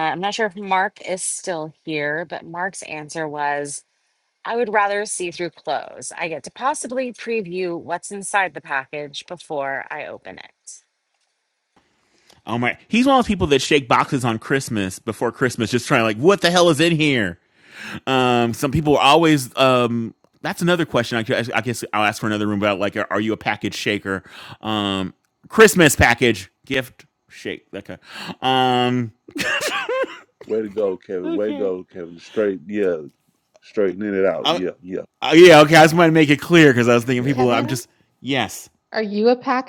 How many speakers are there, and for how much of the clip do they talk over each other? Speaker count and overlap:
four, about 3%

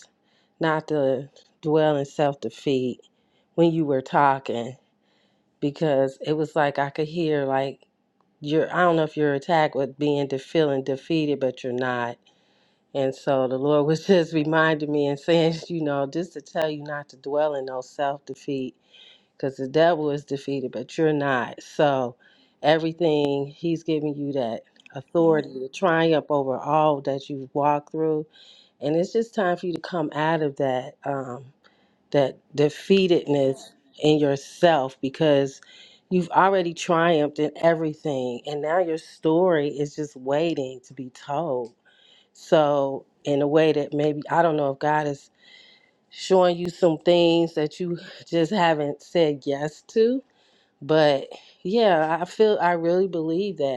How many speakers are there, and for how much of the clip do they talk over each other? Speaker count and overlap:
one, no overlap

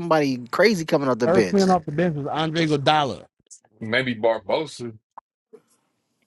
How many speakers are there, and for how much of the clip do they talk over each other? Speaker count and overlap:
three, about 8%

